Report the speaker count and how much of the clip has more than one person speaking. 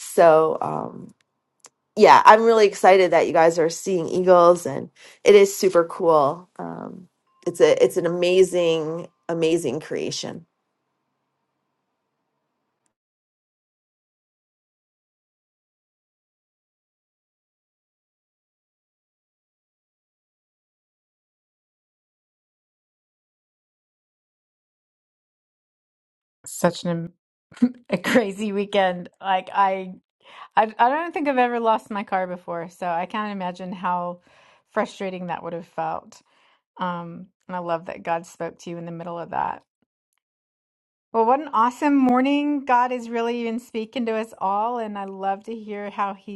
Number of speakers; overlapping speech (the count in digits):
2, no overlap